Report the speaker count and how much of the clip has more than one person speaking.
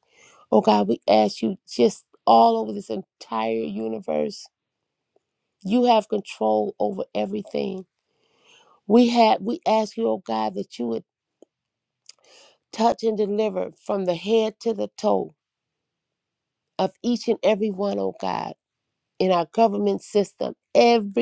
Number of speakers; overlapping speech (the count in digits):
1, no overlap